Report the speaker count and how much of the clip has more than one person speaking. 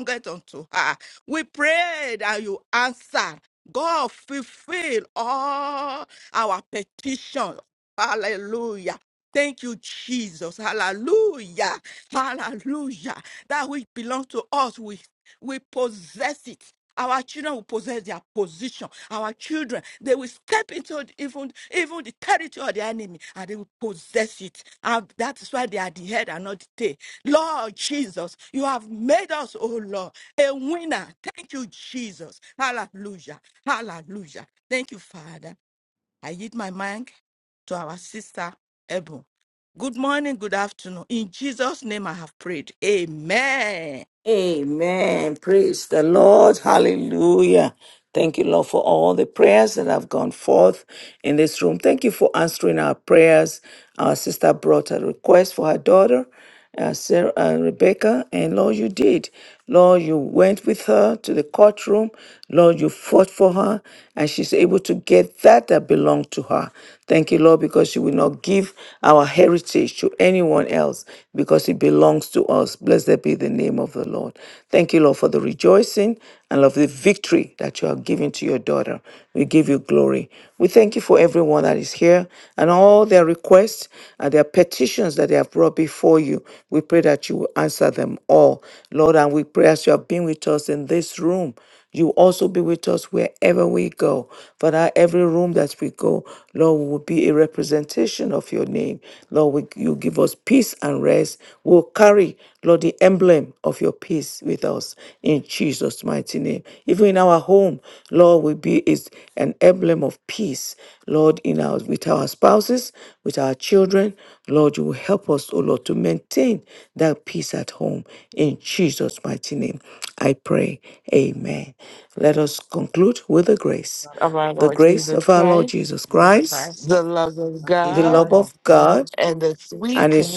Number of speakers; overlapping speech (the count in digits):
3, about 2%